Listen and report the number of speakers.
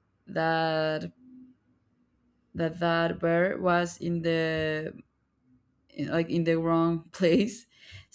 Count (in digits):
1